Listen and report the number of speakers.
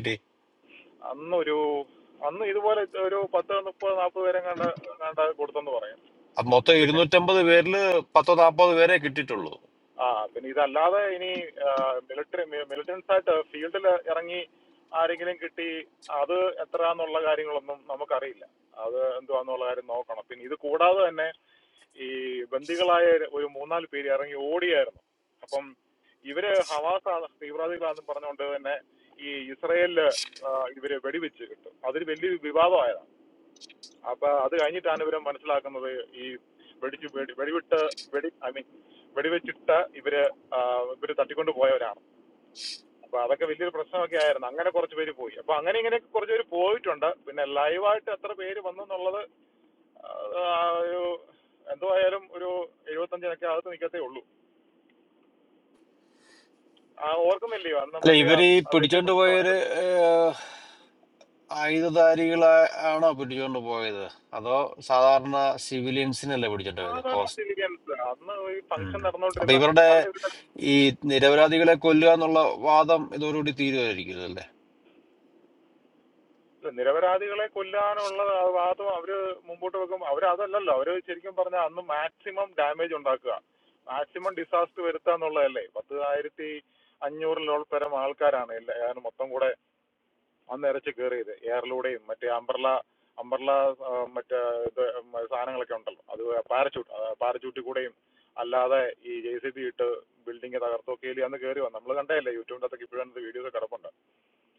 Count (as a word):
two